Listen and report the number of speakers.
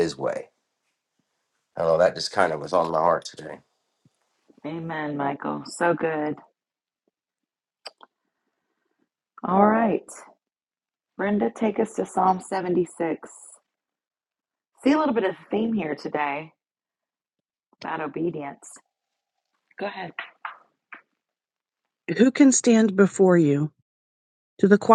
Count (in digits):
3